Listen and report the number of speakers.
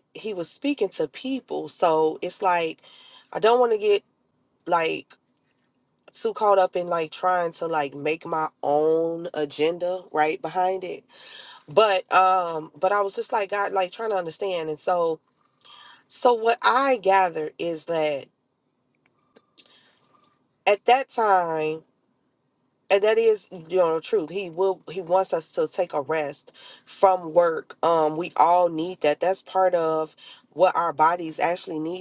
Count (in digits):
1